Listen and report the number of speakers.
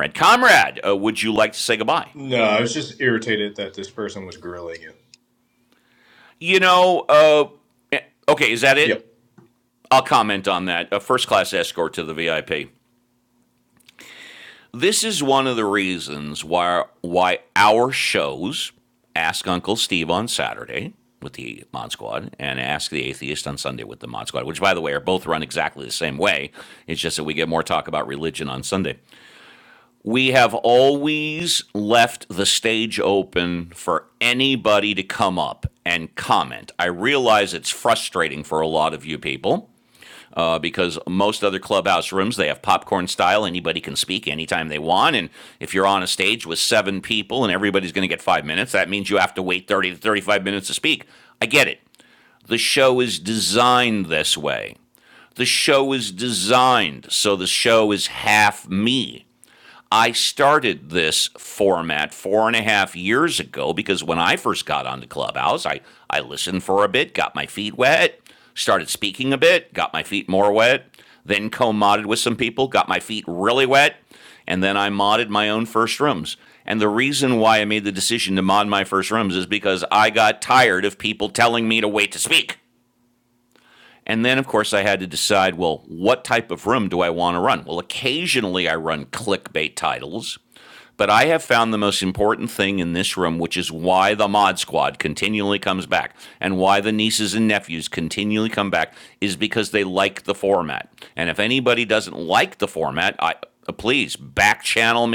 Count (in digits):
2